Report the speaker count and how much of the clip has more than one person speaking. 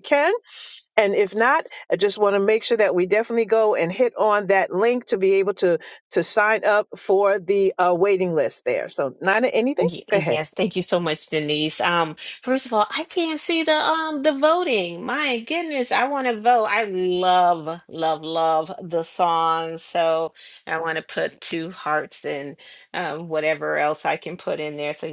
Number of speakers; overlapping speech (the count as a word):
two, about 2%